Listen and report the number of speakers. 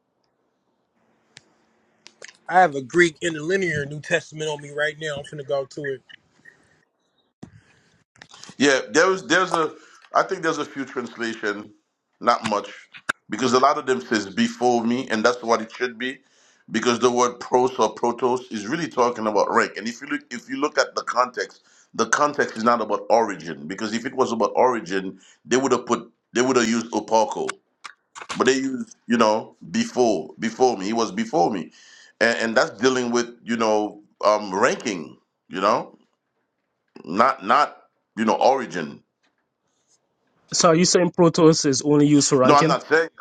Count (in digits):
3